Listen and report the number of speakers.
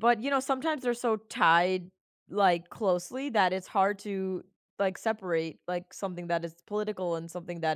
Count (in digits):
1